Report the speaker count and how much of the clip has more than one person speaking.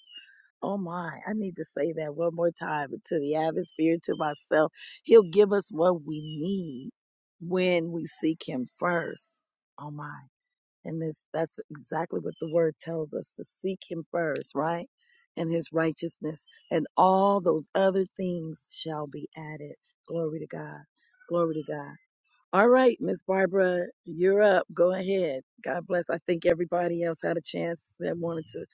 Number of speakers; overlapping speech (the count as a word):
one, no overlap